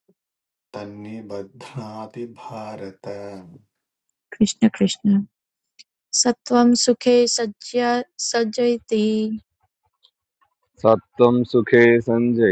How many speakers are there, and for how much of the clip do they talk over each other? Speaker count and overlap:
3, no overlap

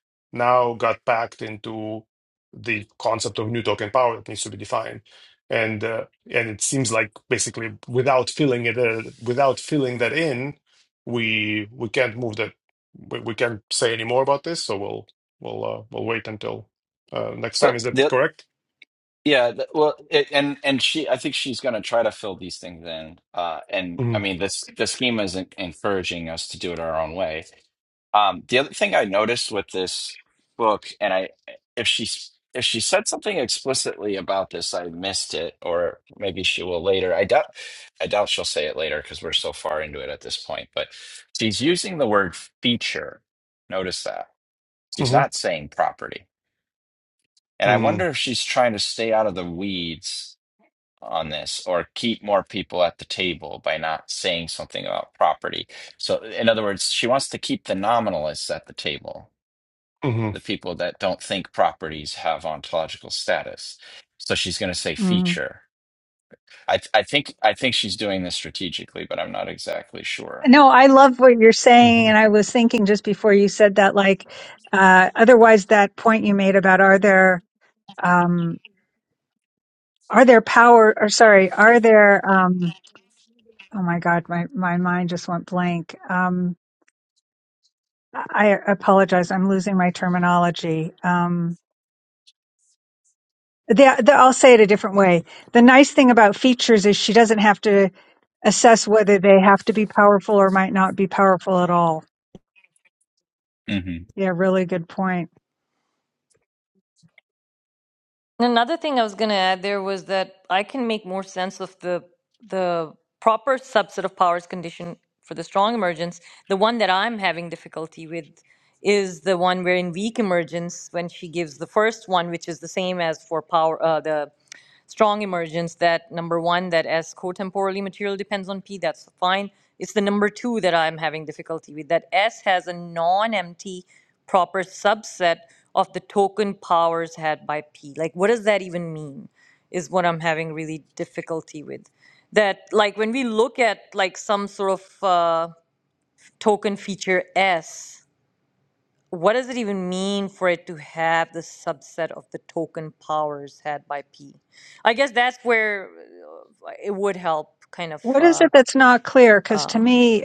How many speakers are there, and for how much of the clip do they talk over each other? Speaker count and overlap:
4, about 1%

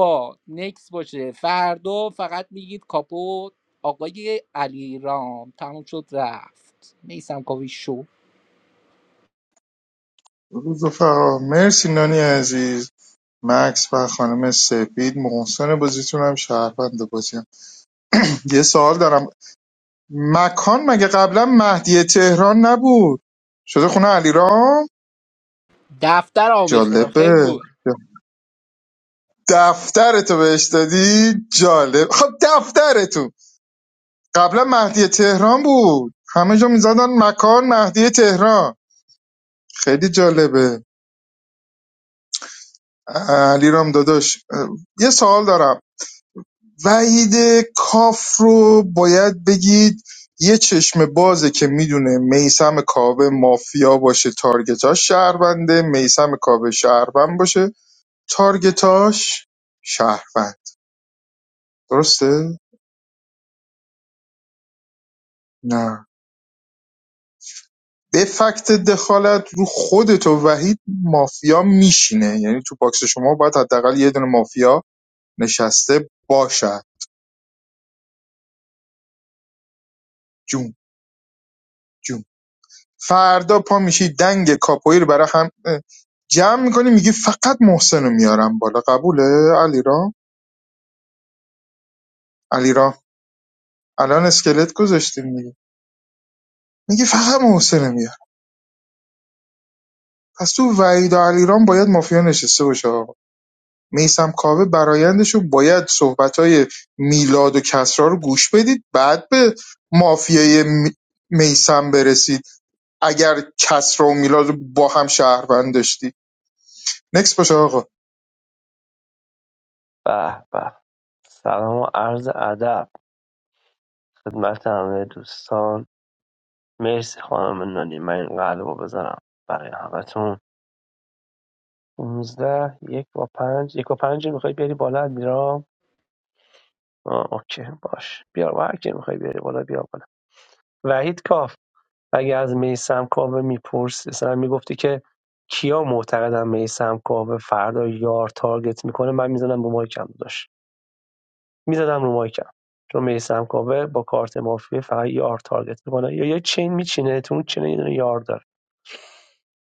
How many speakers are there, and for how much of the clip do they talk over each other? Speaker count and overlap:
3, about 1%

